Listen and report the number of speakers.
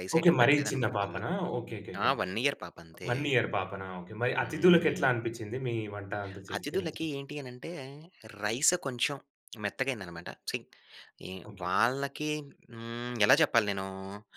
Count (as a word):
two